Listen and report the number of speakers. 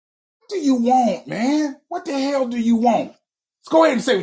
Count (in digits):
1